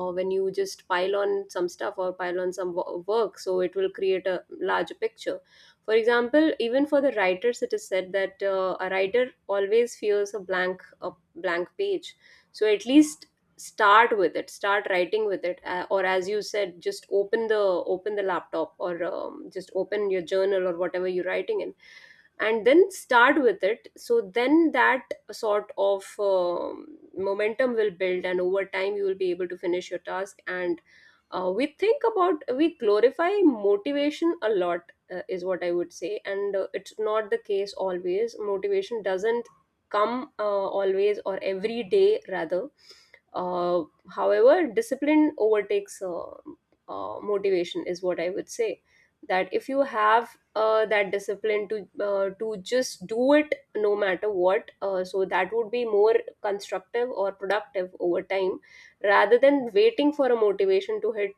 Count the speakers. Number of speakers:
1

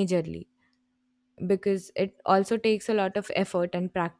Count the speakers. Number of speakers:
1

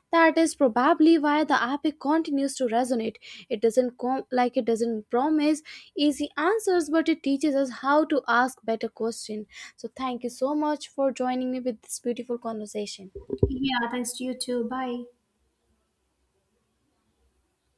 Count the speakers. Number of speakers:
2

